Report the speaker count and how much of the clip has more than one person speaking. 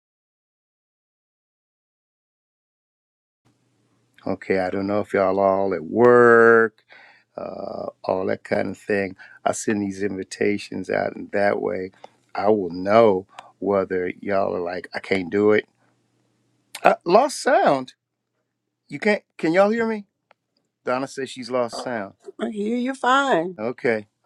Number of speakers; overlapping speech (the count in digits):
2, no overlap